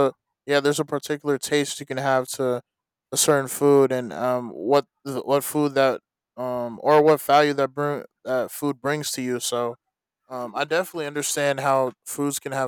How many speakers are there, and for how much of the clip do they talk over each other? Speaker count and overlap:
one, no overlap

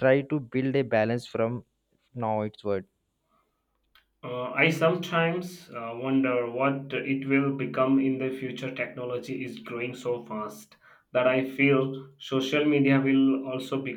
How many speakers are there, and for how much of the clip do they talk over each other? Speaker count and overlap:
two, no overlap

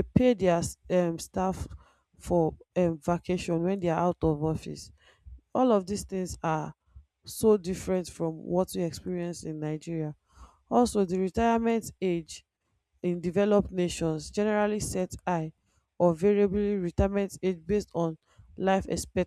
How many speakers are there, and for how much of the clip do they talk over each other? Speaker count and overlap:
one, no overlap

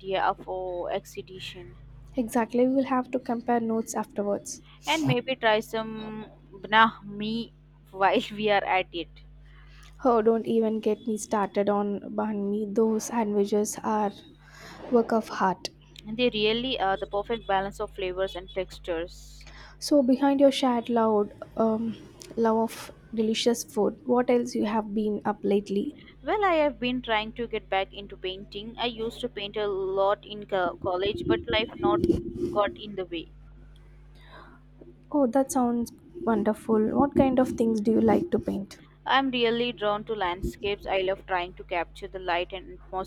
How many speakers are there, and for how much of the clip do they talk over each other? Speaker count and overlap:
two, no overlap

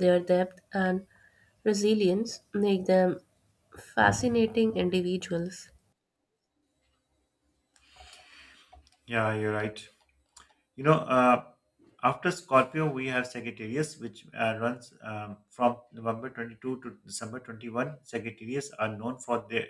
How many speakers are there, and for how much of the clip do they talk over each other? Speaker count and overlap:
two, no overlap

